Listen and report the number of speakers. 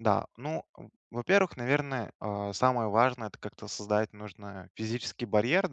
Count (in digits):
1